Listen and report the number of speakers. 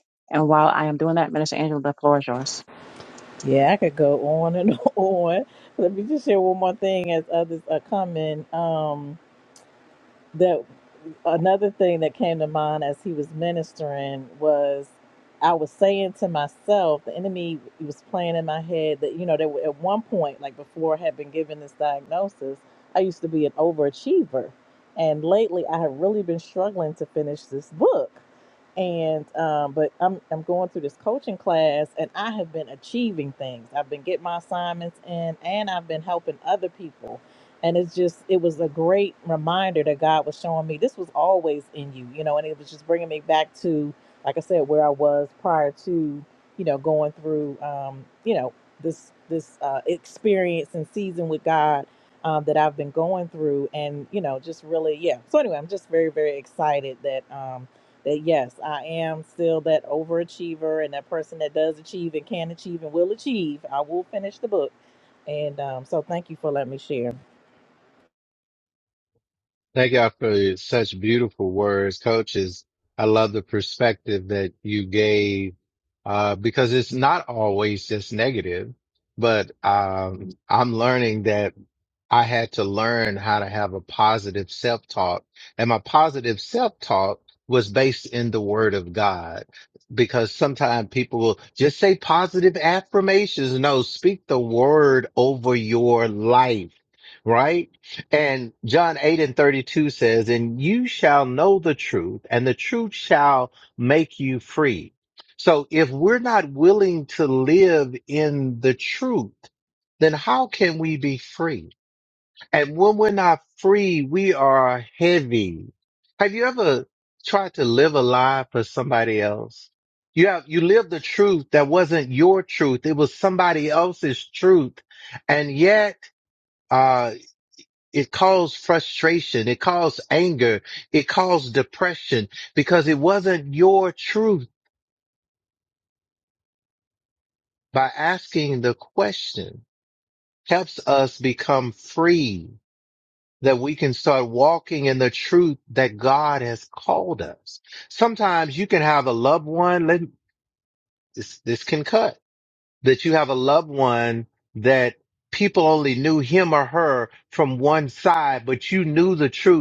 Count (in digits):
3